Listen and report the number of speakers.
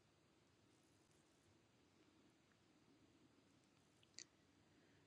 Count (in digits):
0